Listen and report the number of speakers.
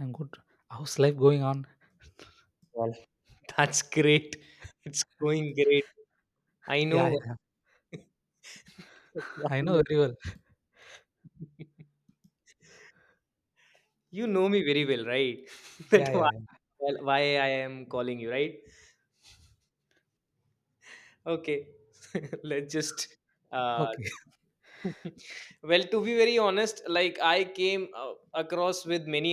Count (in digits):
2